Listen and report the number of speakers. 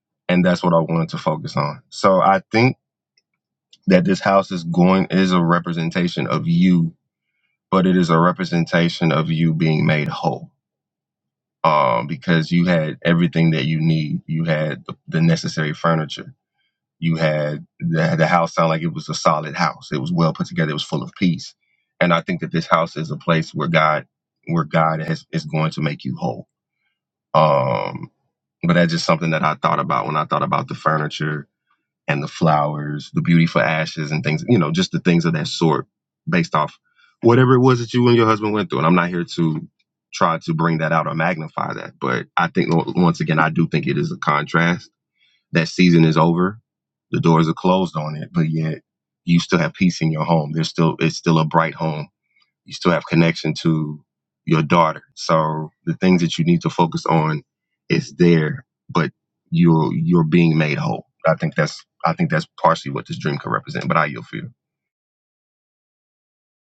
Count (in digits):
1